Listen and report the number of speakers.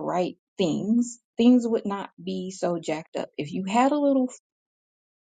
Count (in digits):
1